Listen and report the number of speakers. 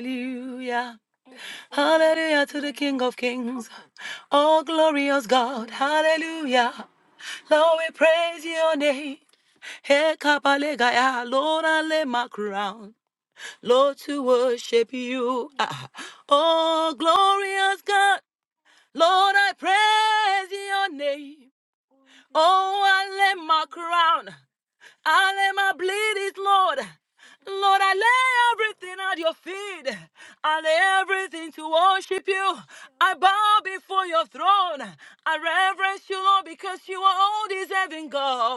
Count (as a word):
one